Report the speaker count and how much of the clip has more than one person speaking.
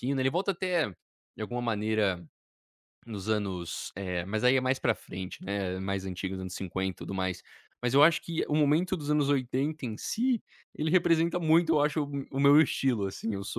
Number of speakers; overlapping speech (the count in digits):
1, no overlap